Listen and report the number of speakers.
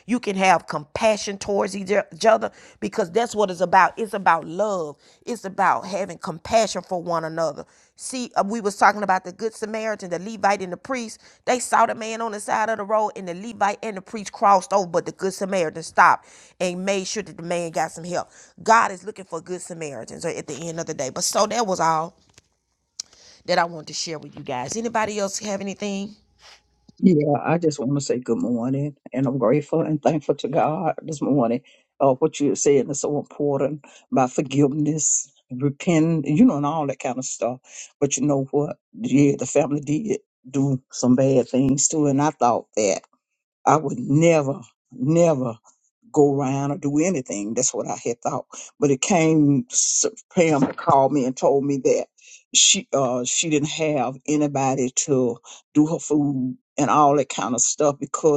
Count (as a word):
two